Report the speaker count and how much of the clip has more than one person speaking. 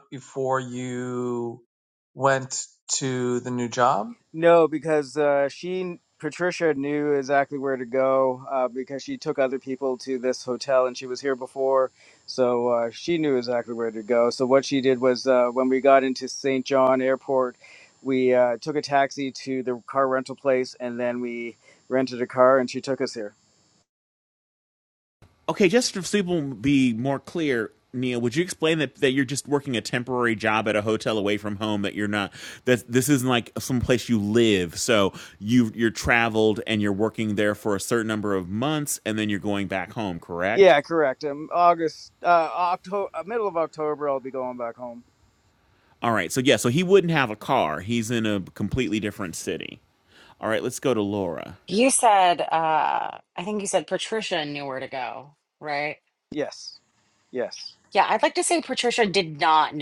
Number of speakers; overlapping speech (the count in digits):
4, under 1%